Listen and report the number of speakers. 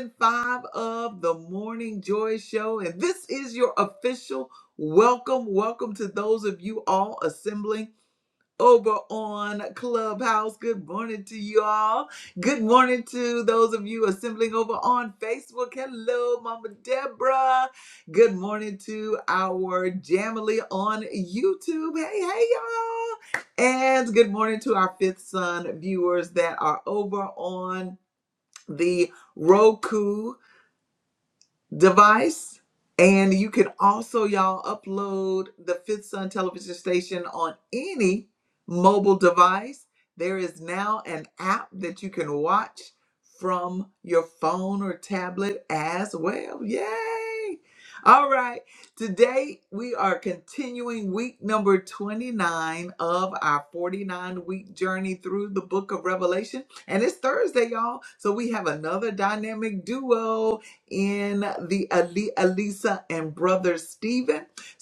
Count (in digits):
1